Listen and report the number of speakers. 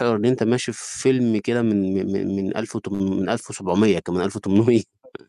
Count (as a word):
one